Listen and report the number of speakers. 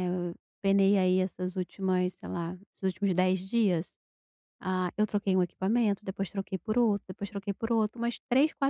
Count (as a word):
one